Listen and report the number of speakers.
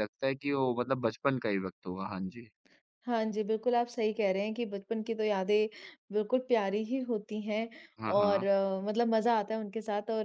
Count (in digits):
2